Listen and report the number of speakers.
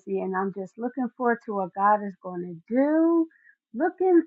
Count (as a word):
one